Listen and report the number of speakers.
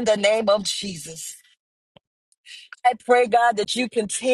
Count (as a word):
one